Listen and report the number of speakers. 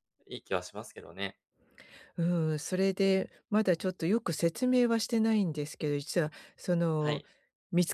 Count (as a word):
two